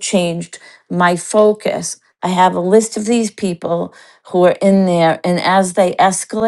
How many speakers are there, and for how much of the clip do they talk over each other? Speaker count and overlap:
1, no overlap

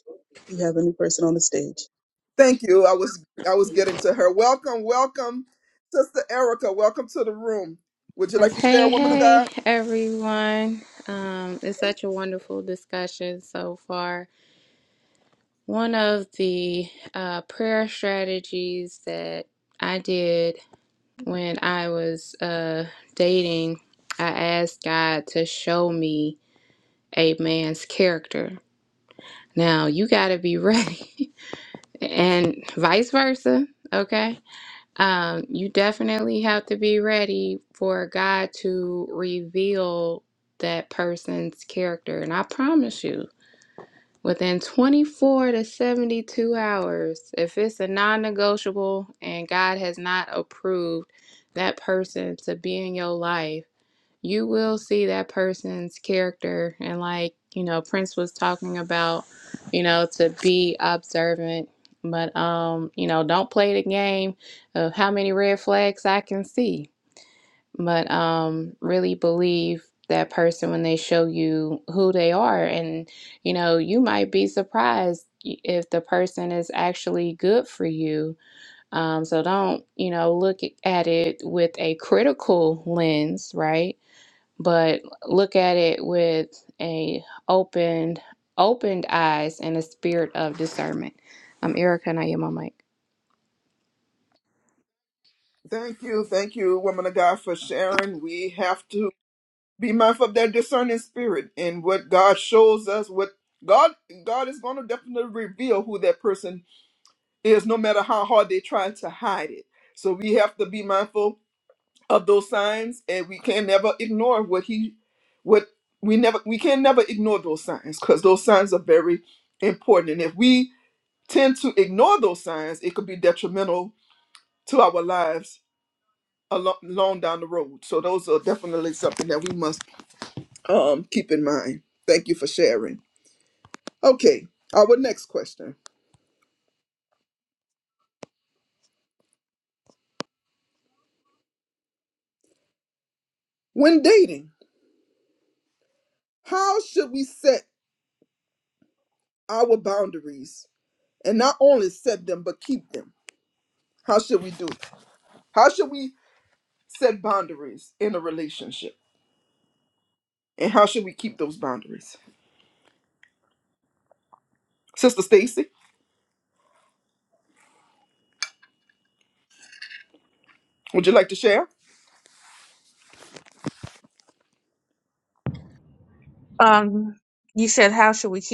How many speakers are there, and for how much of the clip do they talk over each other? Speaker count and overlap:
4, about 1%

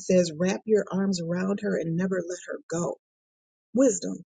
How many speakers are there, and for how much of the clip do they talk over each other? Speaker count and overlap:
1, no overlap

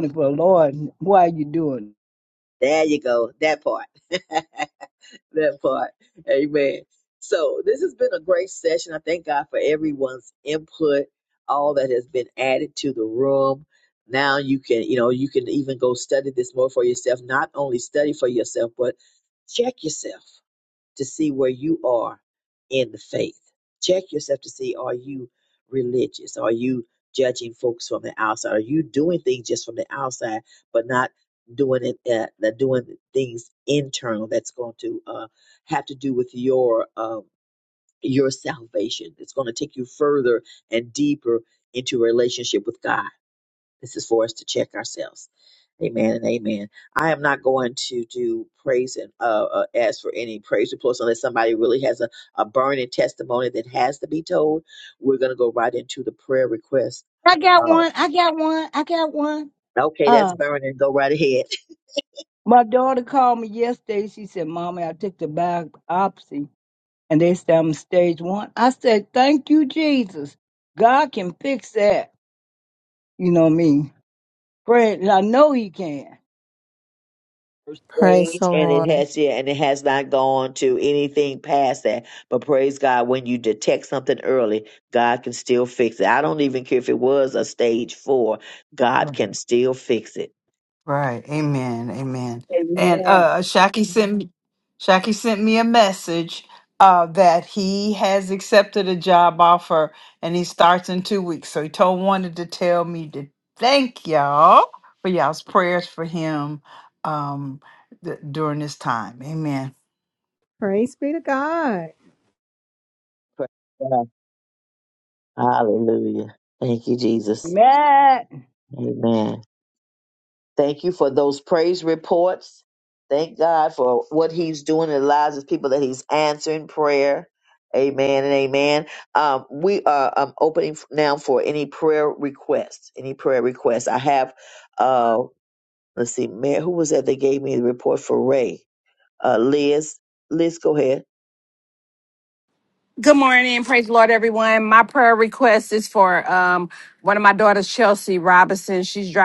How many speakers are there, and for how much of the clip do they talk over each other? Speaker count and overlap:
5, about 1%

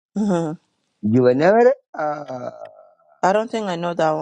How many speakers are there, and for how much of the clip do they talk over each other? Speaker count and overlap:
2, no overlap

